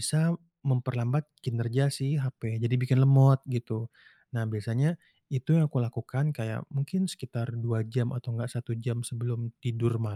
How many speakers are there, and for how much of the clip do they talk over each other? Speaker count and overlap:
1, no overlap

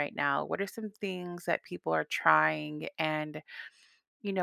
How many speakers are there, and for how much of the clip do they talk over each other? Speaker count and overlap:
1, no overlap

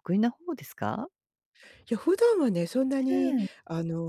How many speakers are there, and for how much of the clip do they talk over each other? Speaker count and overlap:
2, about 9%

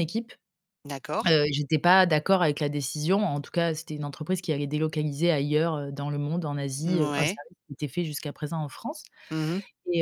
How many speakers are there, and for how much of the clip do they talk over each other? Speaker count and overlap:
2, about 6%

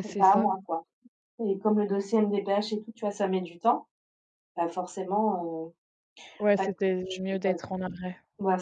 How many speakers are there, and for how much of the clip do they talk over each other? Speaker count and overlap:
2, about 16%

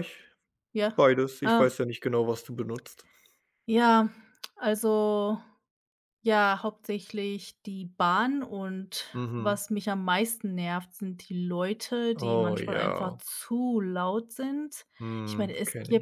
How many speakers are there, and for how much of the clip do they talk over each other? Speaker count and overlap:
2, about 15%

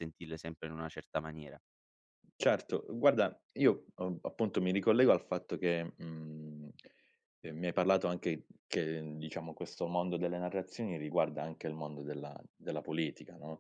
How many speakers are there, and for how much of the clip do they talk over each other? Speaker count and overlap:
2, no overlap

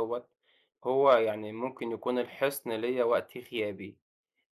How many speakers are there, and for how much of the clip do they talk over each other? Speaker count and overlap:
1, no overlap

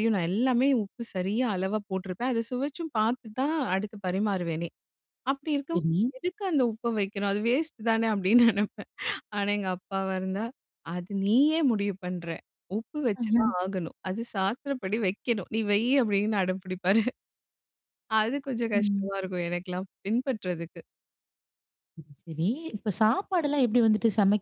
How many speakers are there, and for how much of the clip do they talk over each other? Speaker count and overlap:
2, about 2%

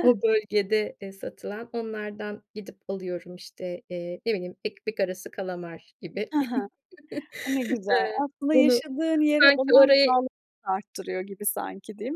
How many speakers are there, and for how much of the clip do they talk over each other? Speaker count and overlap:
2, about 14%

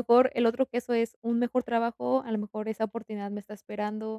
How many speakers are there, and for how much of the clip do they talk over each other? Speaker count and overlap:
1, no overlap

